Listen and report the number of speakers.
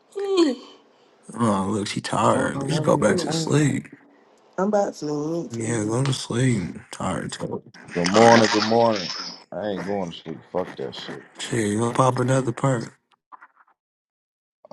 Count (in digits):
3